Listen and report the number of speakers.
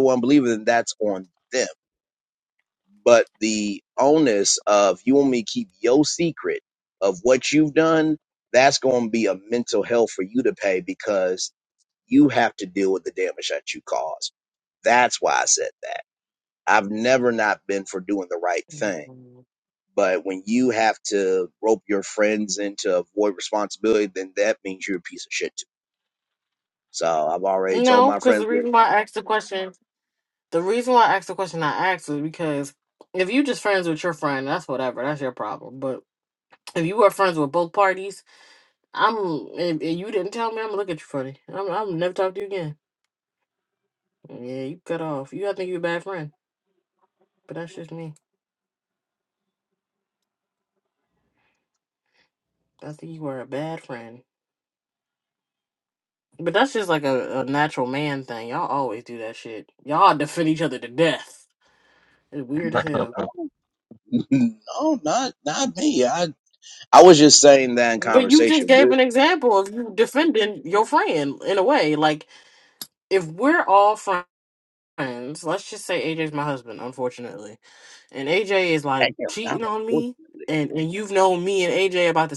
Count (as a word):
two